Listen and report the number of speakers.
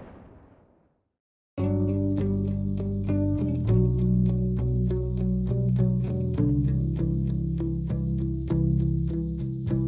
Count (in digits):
0